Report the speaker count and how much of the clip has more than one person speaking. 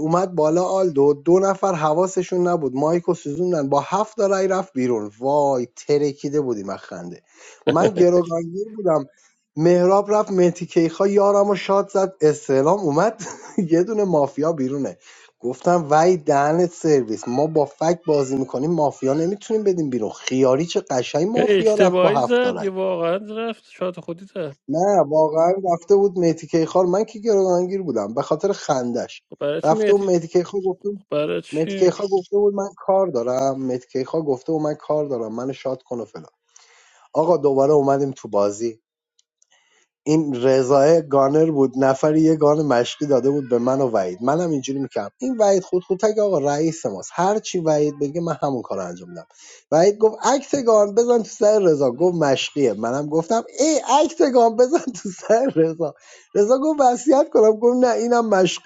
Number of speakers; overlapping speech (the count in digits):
2, about 4%